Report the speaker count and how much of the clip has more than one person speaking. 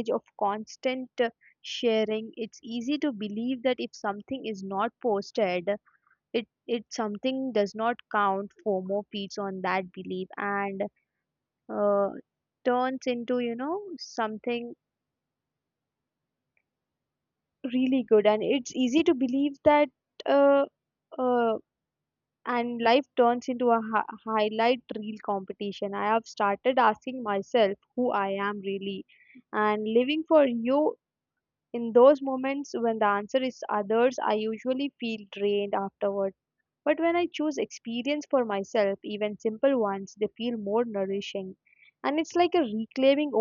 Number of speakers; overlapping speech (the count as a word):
one, no overlap